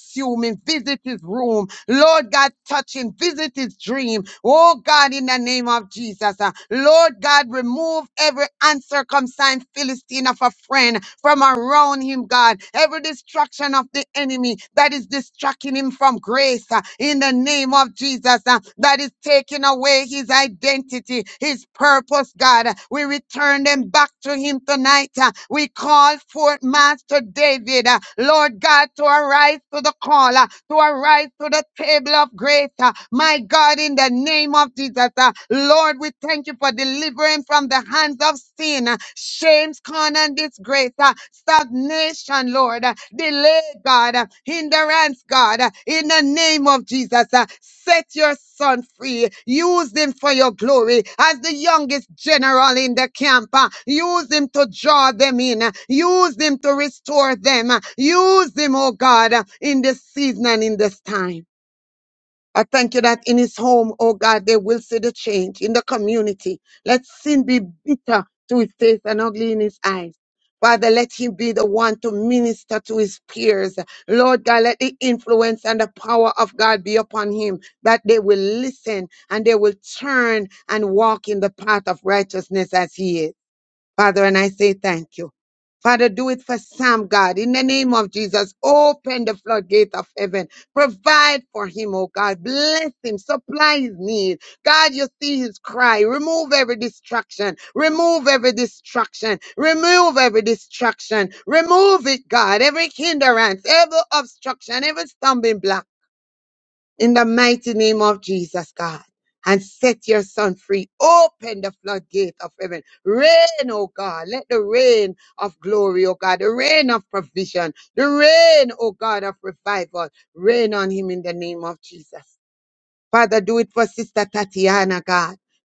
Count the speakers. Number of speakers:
1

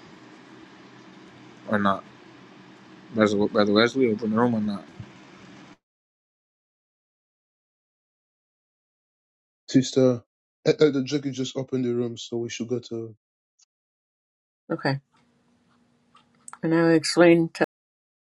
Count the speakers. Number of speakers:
3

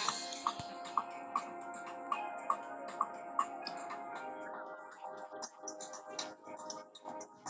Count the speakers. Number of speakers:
0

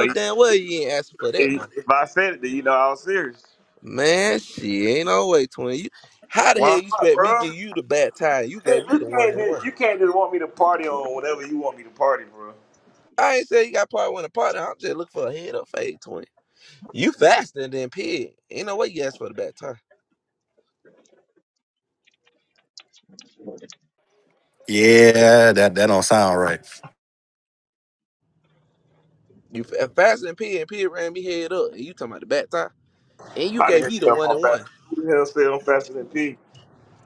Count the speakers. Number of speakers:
3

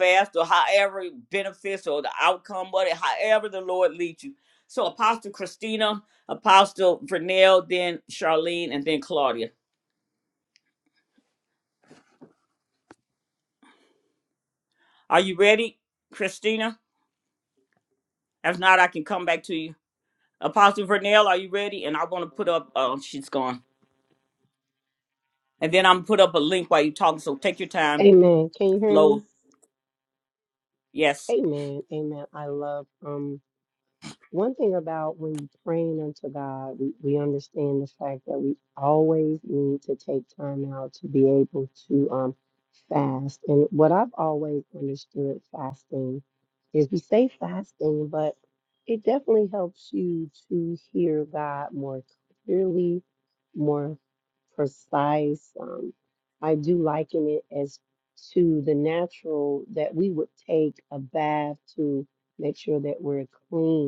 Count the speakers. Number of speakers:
2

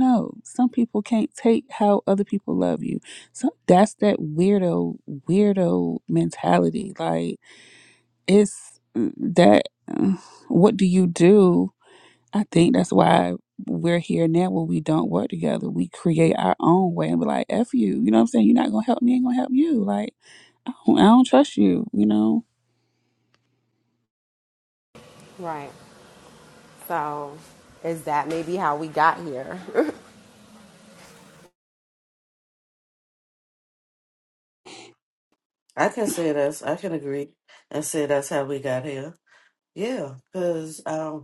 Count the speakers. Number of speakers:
3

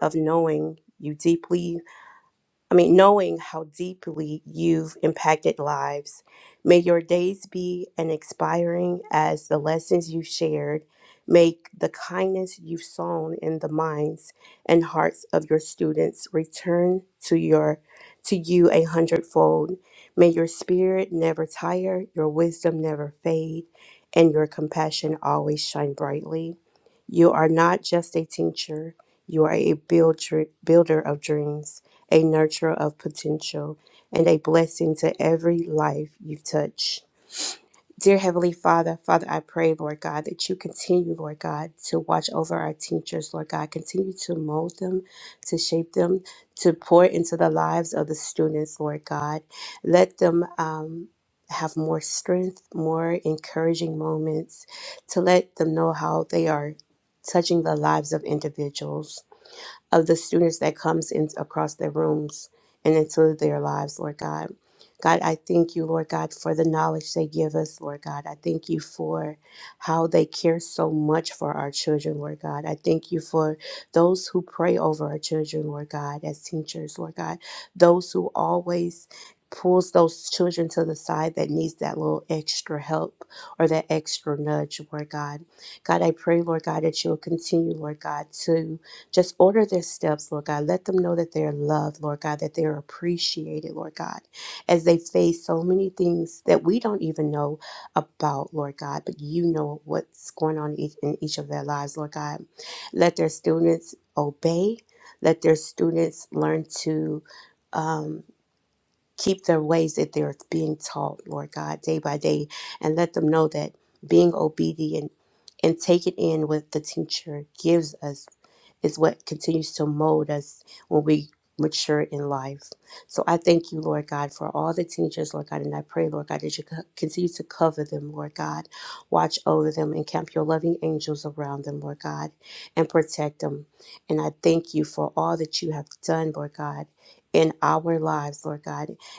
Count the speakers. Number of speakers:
1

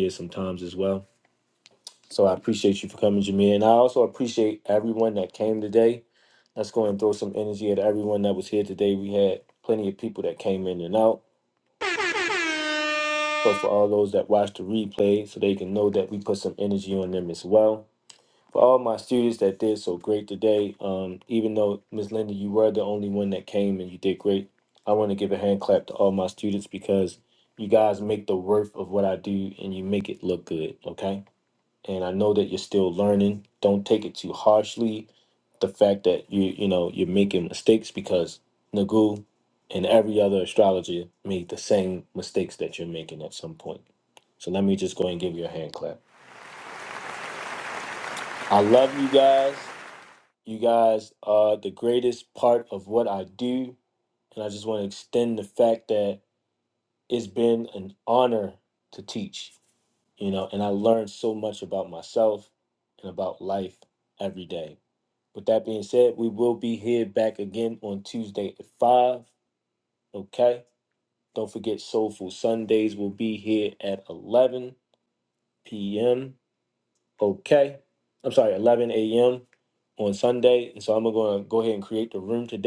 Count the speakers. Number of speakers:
1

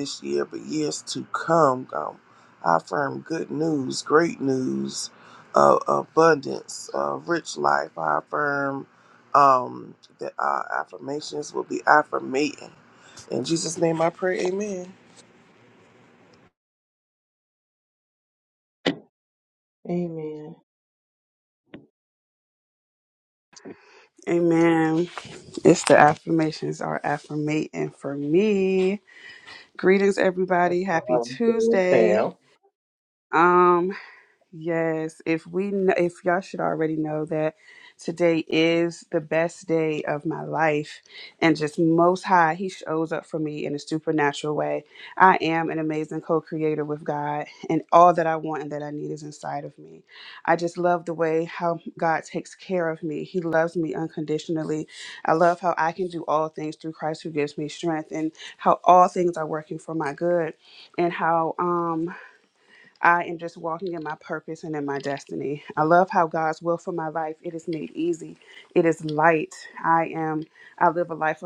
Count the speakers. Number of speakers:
3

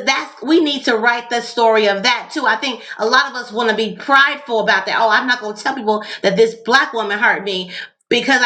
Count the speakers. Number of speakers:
1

